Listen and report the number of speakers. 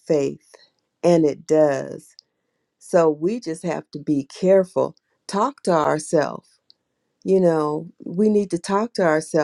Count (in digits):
1